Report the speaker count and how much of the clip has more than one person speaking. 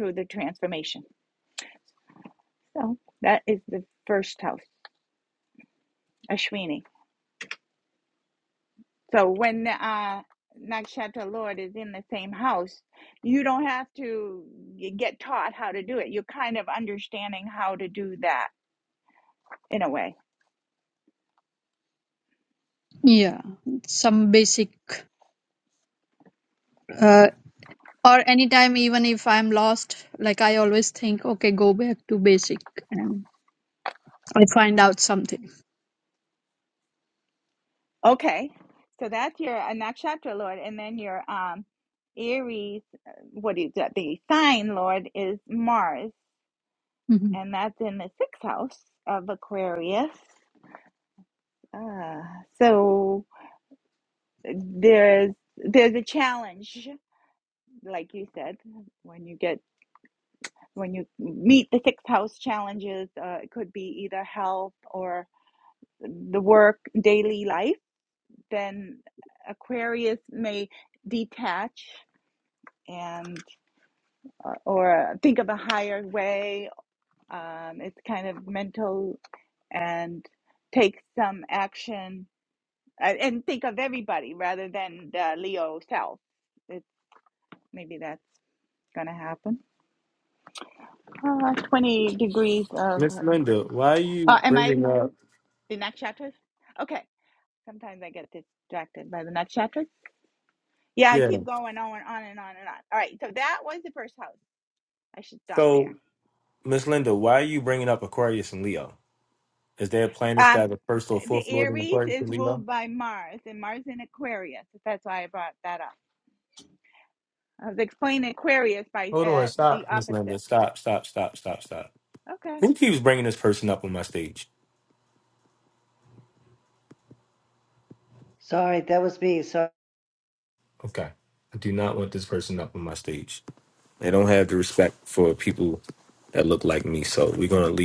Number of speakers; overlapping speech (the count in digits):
4, about 3%